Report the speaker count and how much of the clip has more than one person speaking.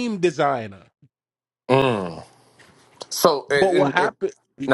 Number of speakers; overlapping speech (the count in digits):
2, about 13%